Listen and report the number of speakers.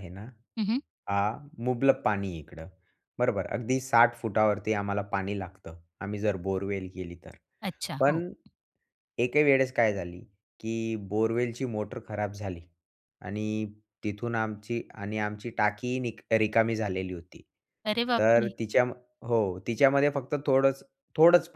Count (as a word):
two